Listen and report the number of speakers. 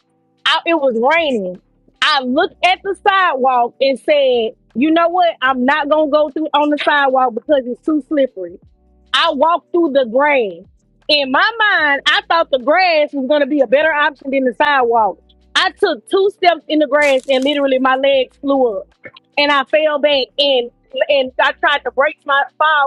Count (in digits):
1